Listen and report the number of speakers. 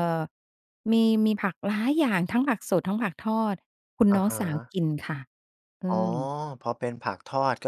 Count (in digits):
2